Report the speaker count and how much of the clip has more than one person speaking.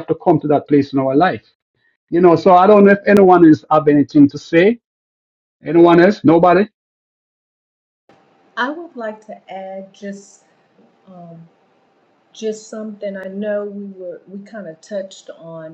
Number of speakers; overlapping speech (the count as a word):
two, no overlap